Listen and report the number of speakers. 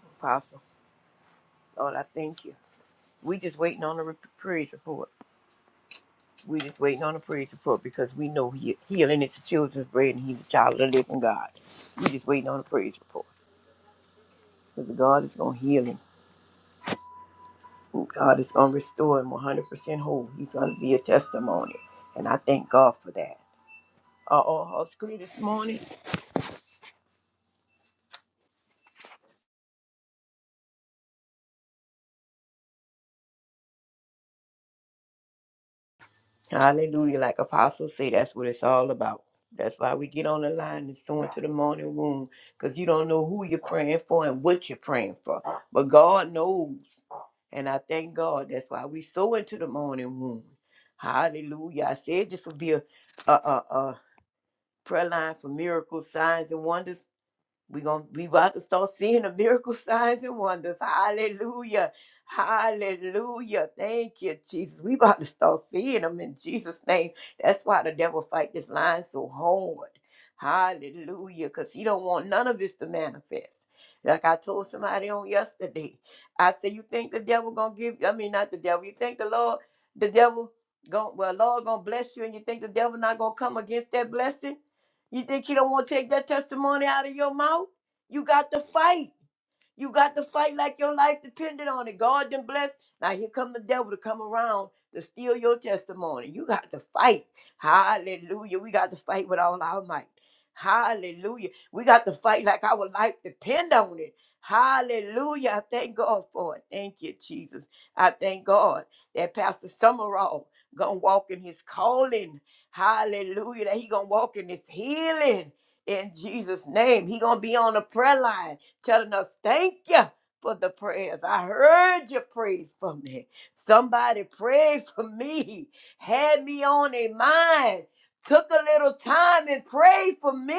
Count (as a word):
one